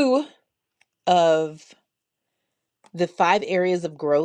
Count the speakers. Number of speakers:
1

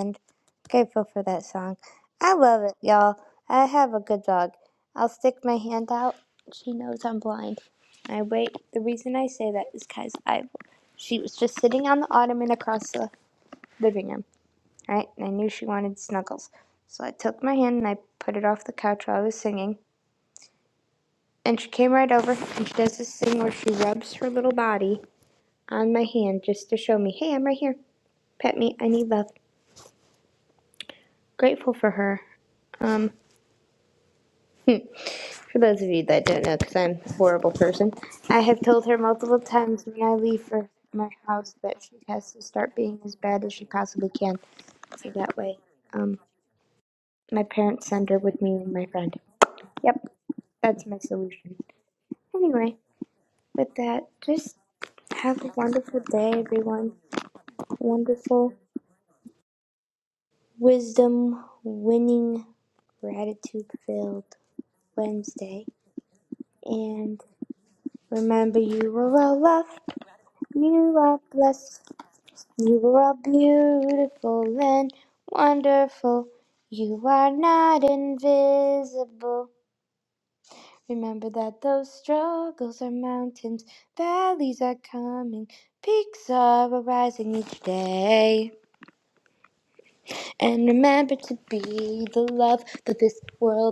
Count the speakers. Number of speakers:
1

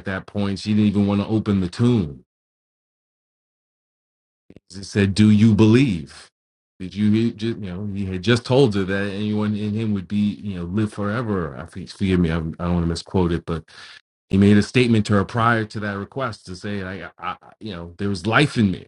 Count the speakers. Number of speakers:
1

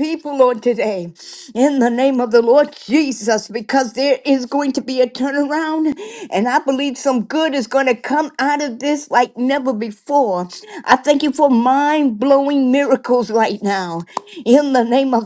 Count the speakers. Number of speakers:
1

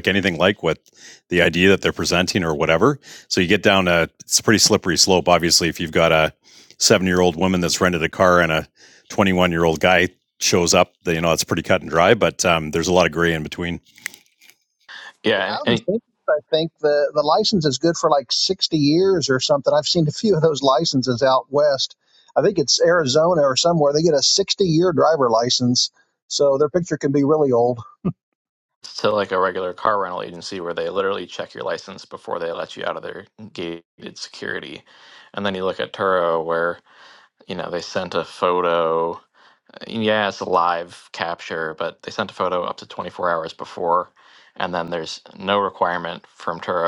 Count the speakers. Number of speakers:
3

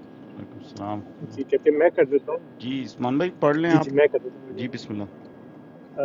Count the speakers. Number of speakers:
2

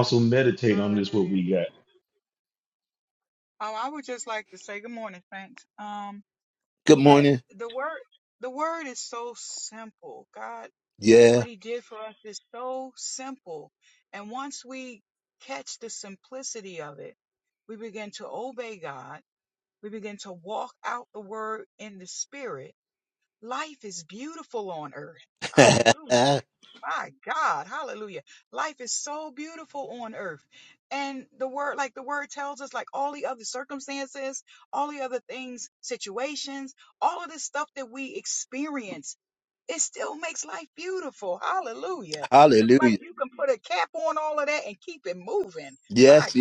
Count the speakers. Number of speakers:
3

